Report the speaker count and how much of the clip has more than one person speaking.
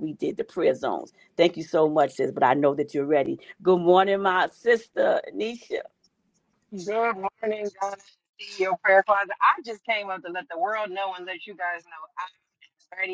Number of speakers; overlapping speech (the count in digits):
2, no overlap